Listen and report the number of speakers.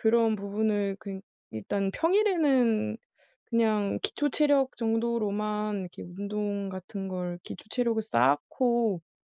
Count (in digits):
1